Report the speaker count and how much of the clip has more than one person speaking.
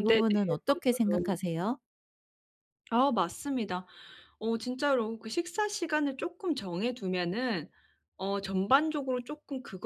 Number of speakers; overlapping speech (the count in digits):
2, about 10%